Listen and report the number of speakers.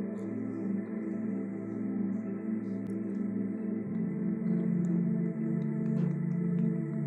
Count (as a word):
zero